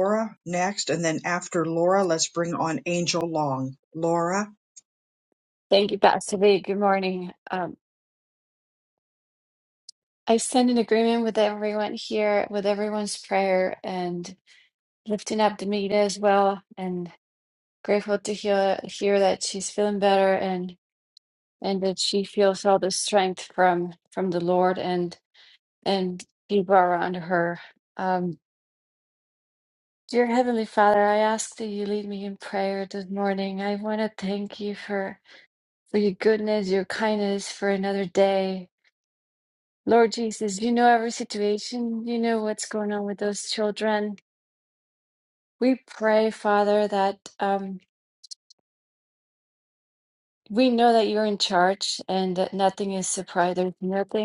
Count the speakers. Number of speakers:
2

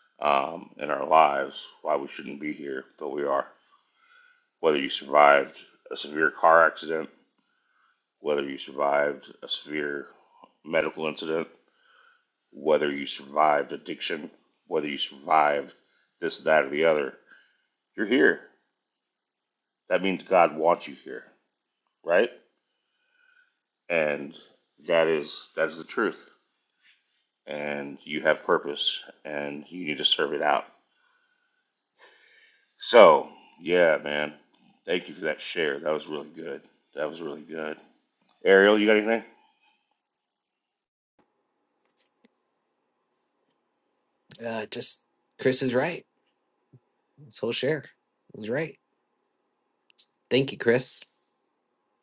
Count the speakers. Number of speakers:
2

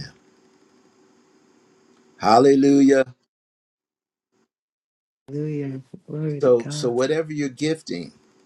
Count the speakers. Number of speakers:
2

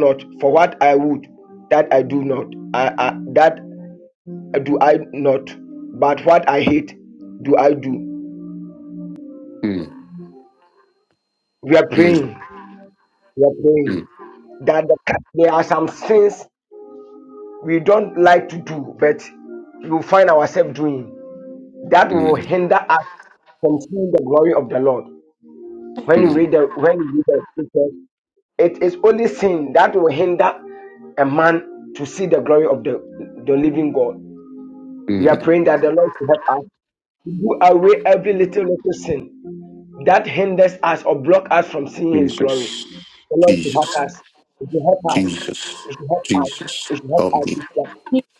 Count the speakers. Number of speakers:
2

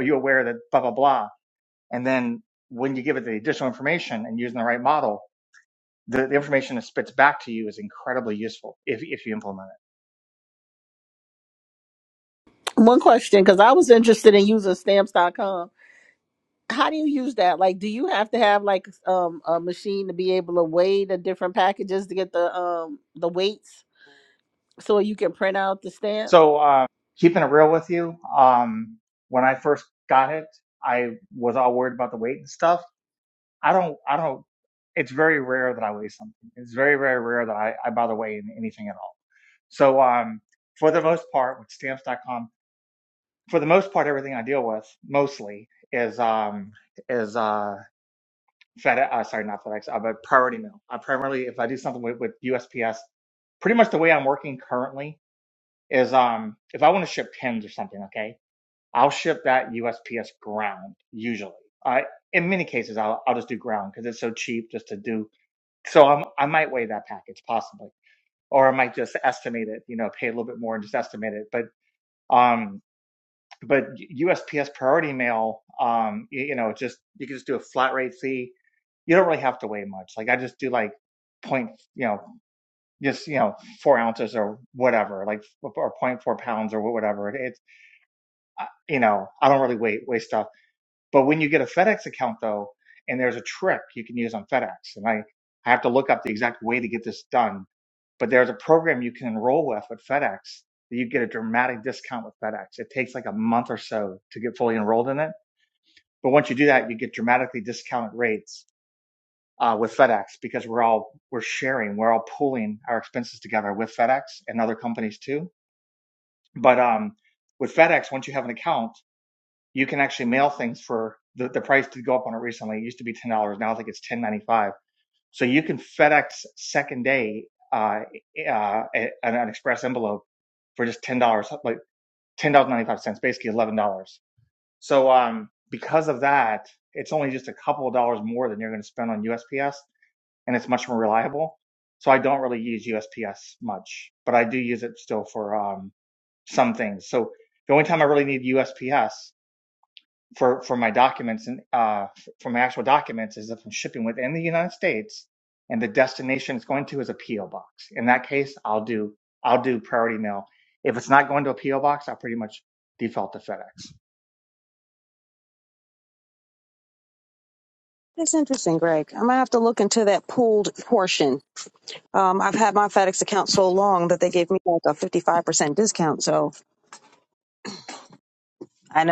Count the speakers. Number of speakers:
3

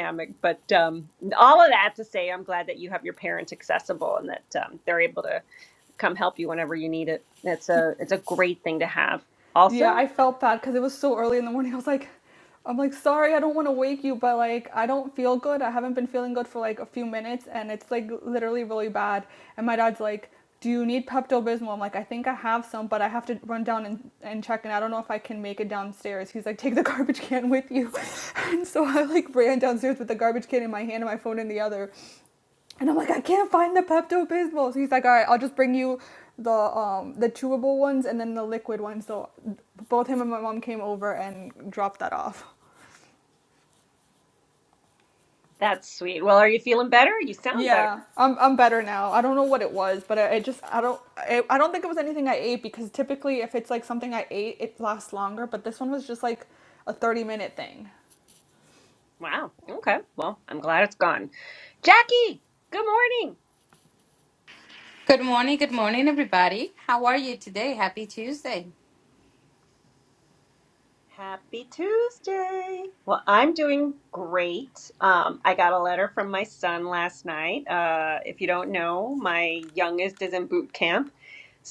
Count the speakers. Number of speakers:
3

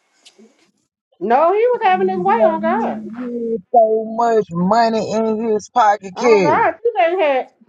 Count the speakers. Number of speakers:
2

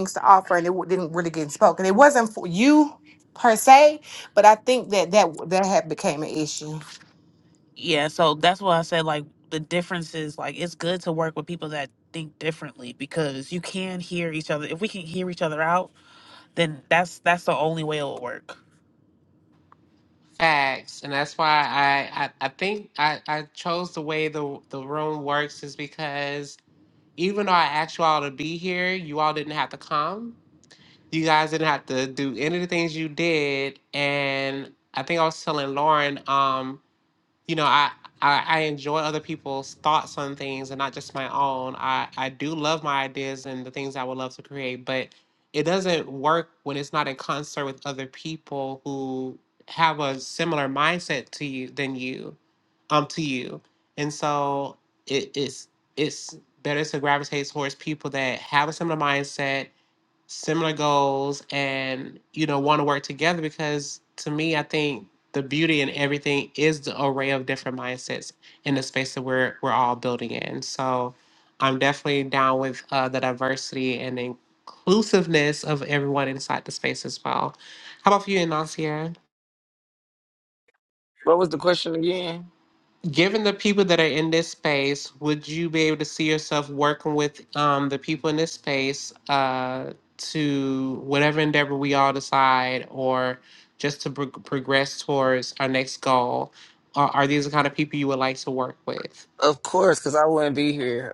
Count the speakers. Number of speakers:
4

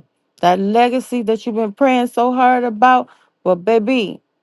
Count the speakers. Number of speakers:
1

